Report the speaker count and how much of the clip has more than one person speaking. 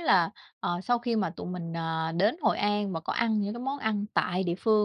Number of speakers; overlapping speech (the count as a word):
one, no overlap